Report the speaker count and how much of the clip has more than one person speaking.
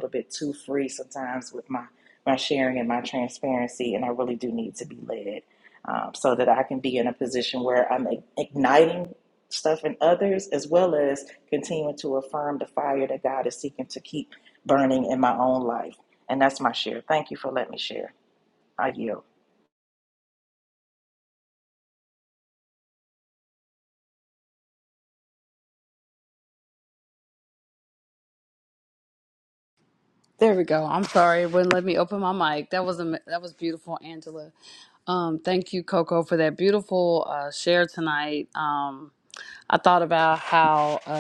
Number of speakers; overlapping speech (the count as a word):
two, no overlap